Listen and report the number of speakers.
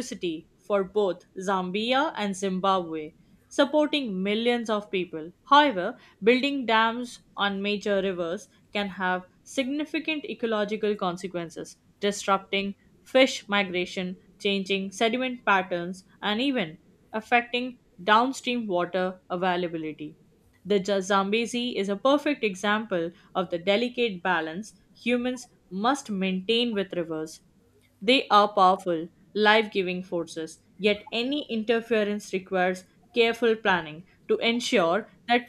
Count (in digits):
1